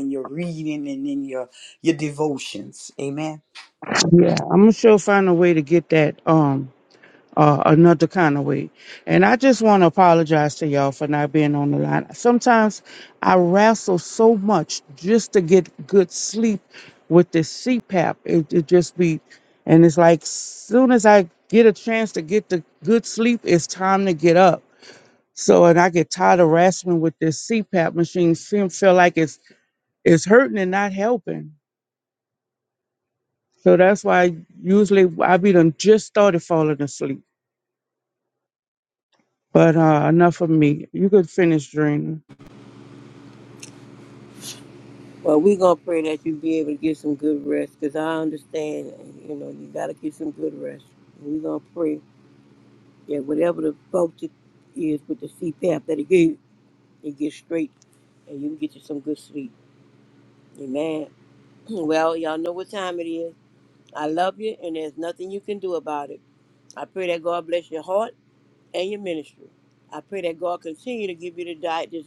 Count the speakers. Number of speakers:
three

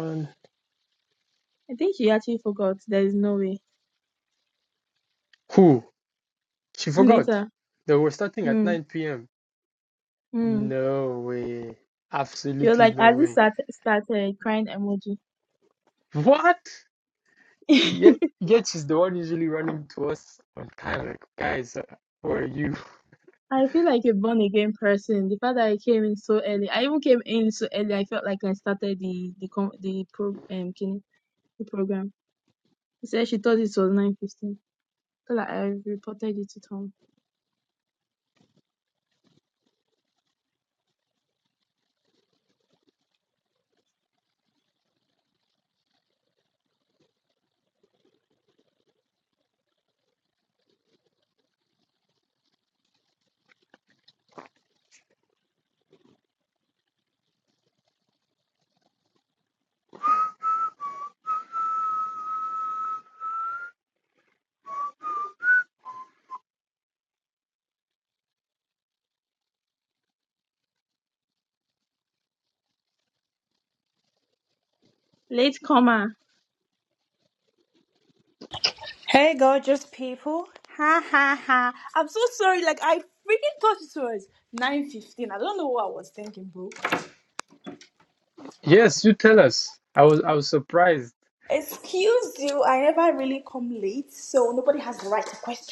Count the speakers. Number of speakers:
three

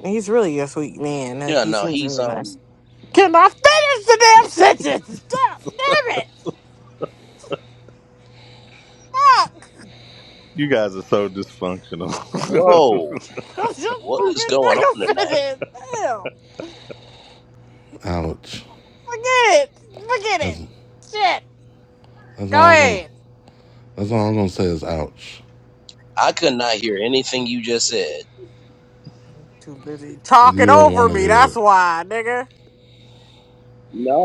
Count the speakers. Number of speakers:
four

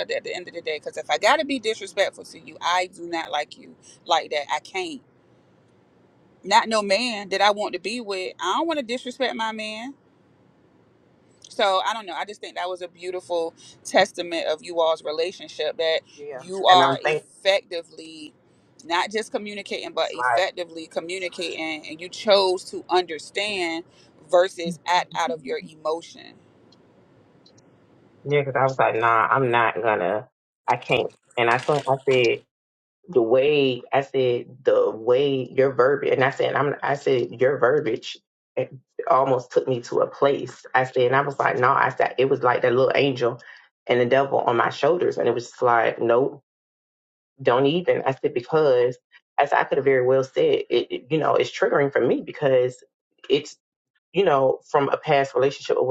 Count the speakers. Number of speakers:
two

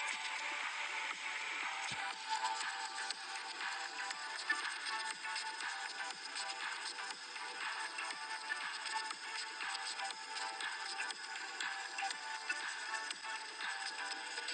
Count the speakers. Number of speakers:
zero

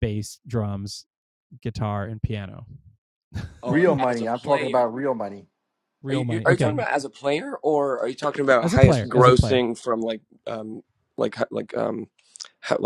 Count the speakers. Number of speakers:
three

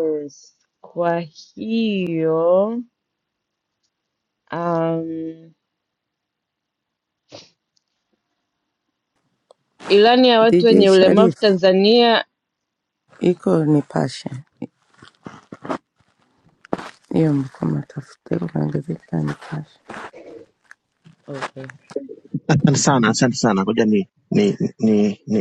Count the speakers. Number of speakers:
three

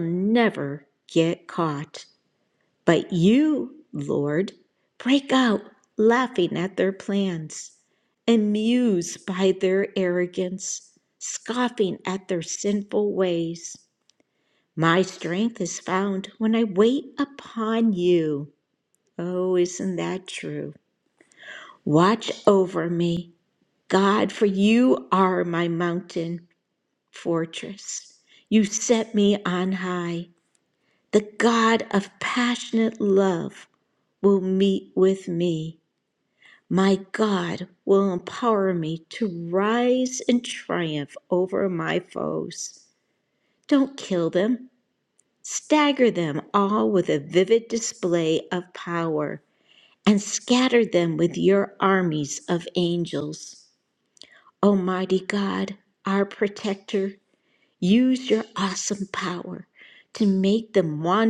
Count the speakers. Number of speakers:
one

